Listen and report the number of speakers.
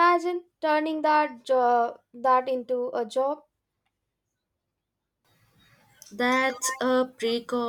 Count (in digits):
2